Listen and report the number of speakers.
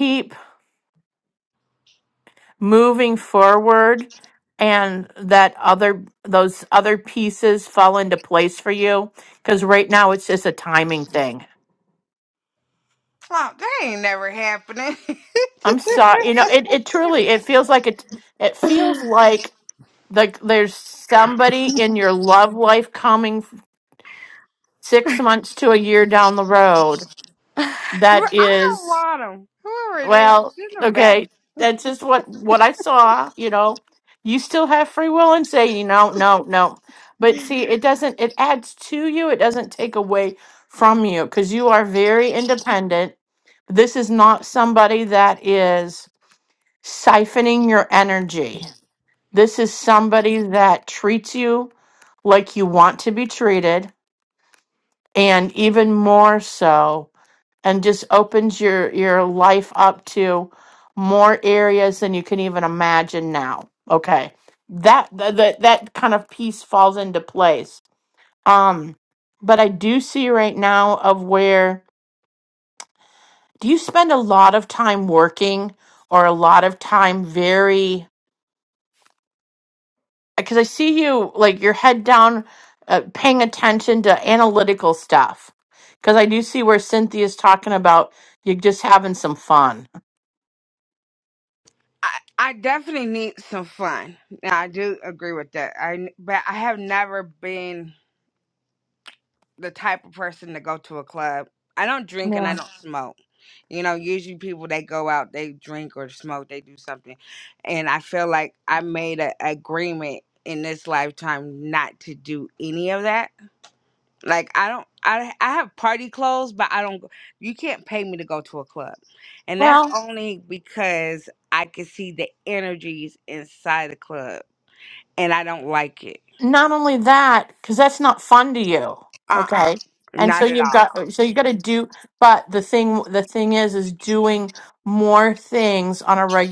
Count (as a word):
two